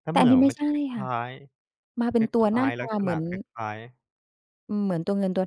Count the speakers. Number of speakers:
2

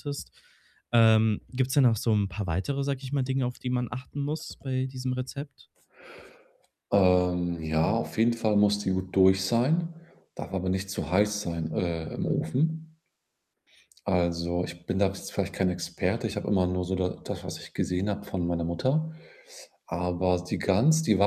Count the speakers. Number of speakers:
2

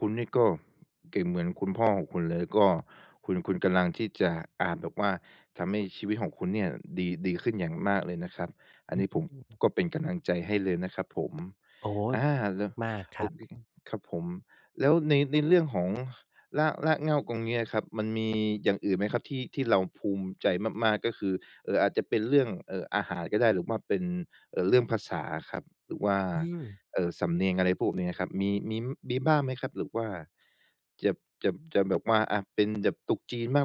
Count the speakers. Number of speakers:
2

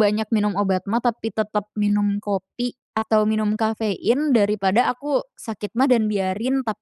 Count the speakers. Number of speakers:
1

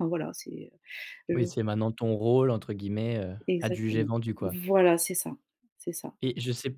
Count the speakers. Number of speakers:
2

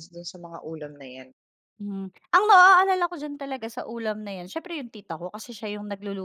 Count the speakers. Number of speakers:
2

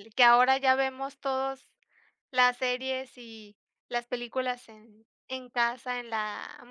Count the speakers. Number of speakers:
1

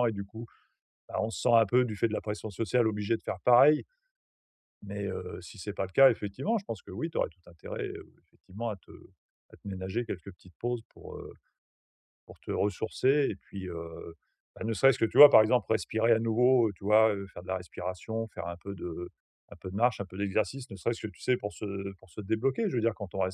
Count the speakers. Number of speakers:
1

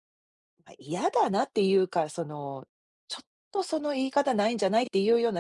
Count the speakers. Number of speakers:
1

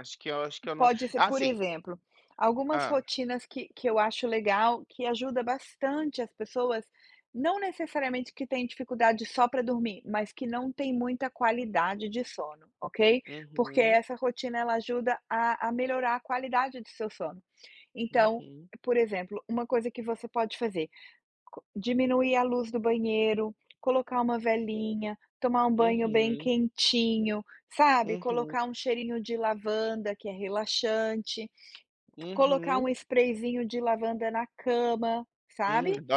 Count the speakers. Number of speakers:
2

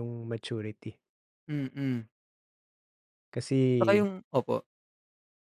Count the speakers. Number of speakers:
2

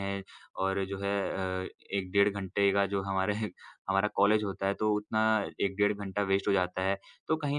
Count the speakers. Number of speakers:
1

